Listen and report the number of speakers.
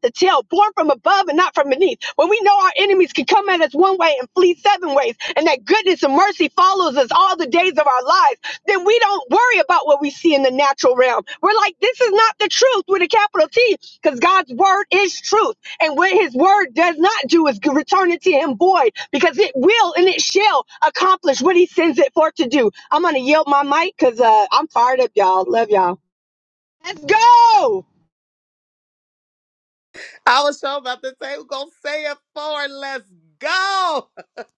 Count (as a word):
two